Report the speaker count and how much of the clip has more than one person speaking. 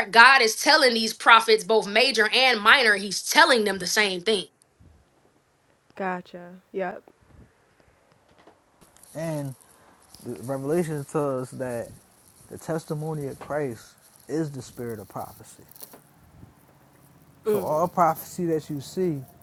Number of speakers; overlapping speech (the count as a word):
three, about 1%